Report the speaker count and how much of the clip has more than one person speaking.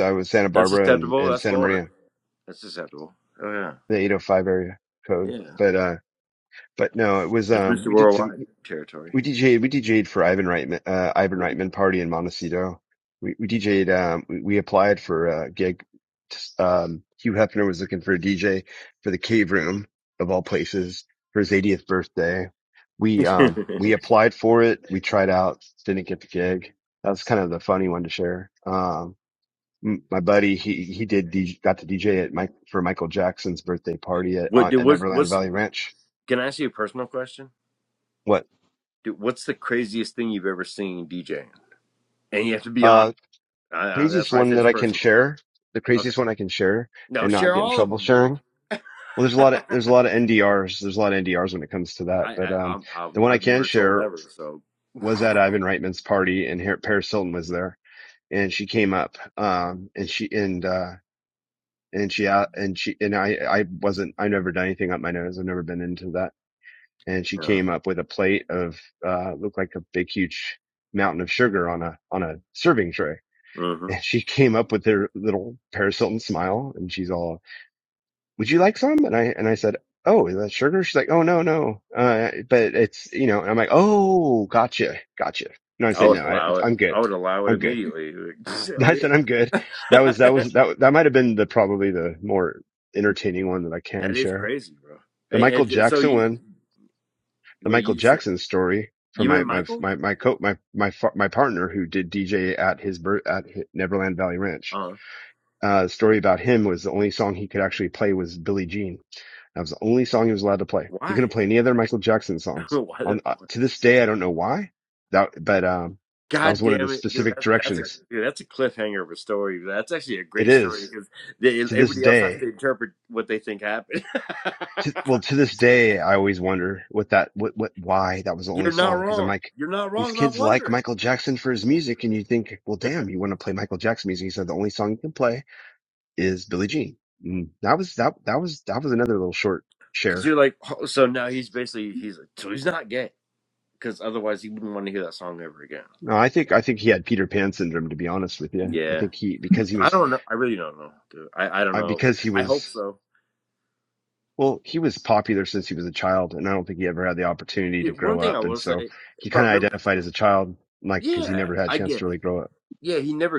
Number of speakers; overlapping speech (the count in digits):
2, about 14%